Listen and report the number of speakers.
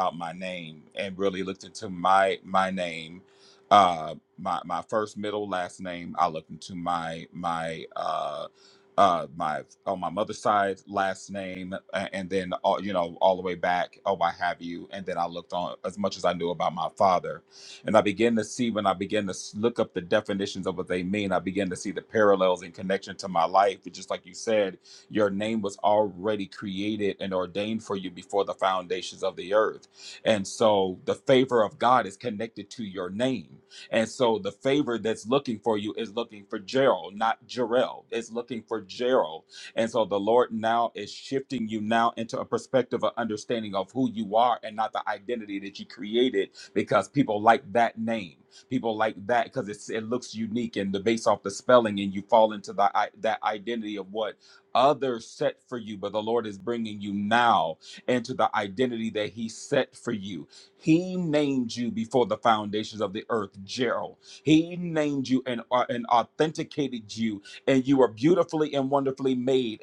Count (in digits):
1